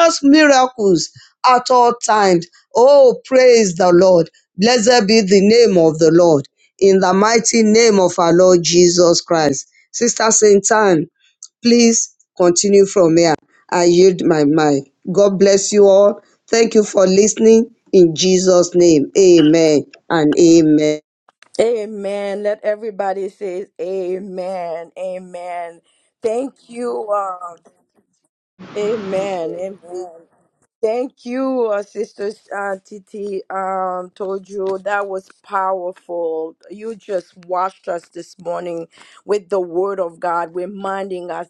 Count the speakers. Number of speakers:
2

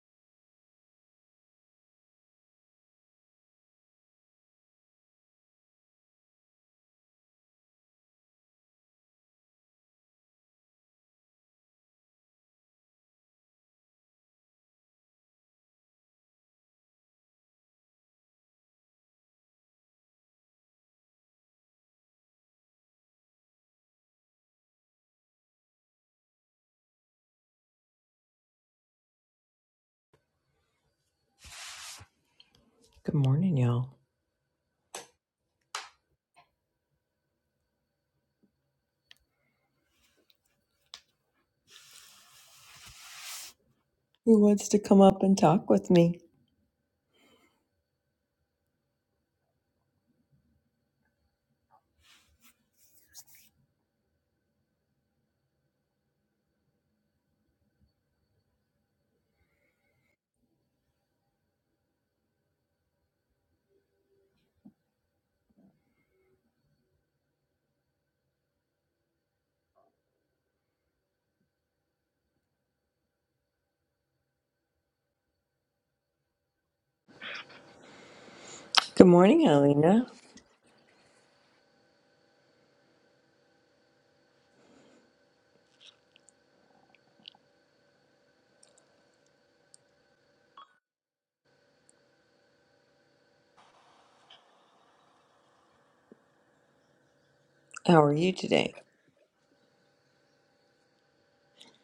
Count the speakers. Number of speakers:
1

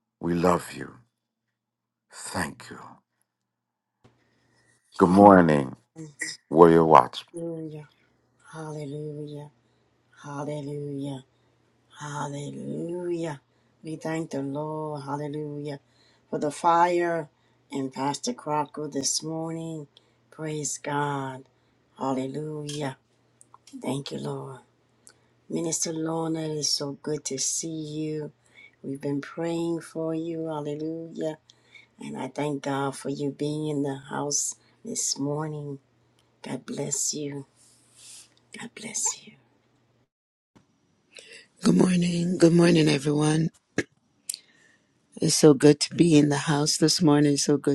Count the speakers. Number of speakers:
3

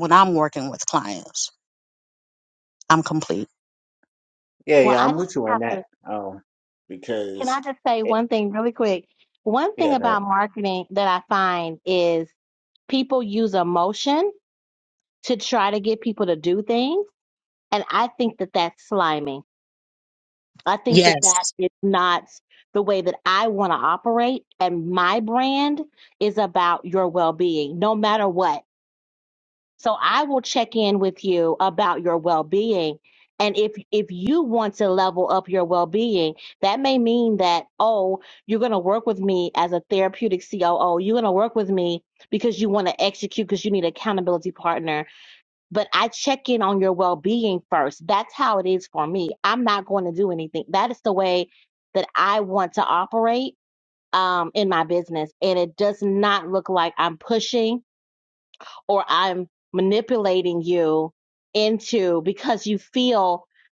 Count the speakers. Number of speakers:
3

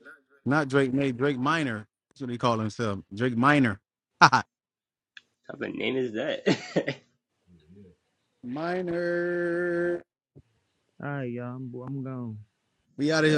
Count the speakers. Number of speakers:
3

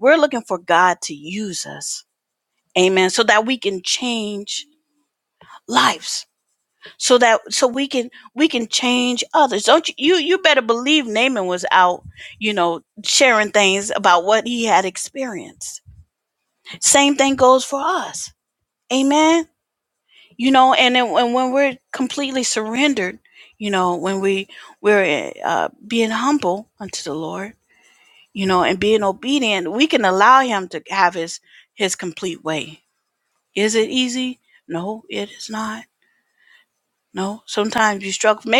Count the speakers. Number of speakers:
1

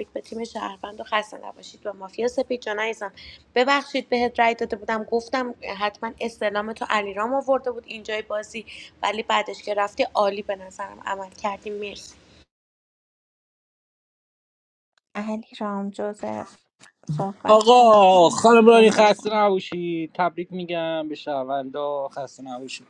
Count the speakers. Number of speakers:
3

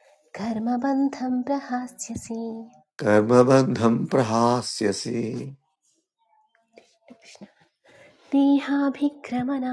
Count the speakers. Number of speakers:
2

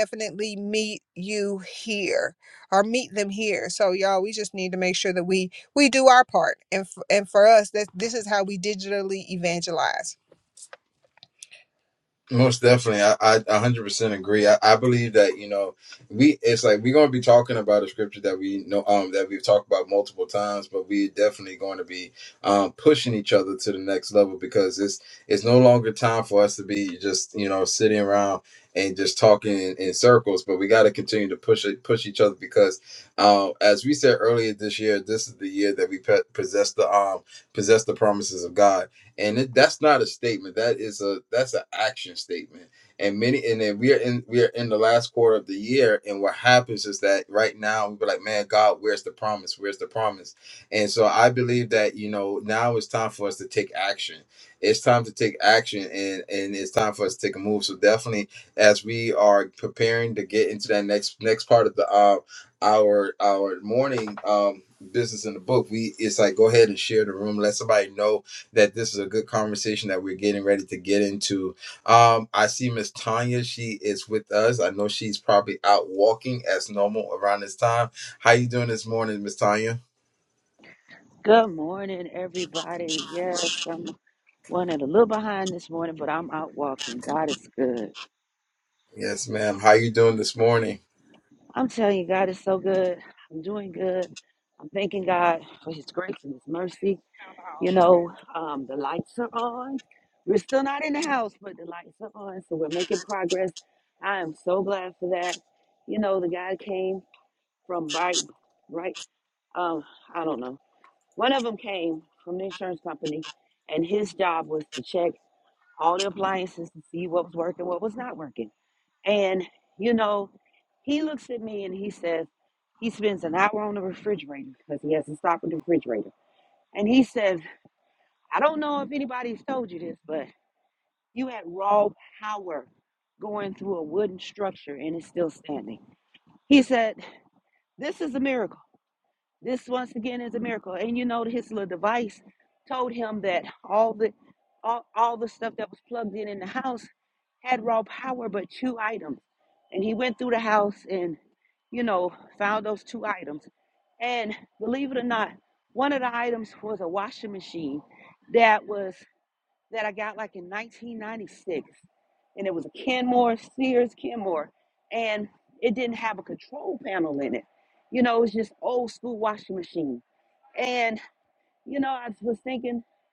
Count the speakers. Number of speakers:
3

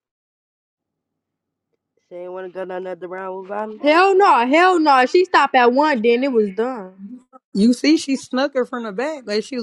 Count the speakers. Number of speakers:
3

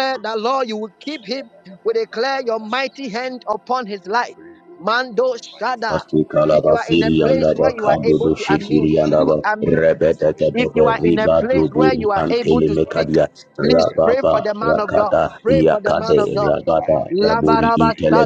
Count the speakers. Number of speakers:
2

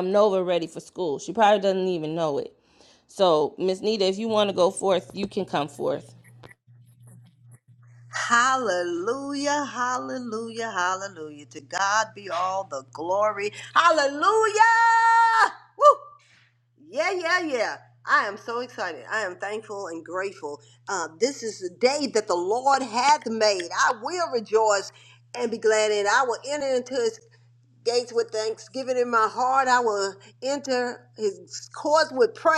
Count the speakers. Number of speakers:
2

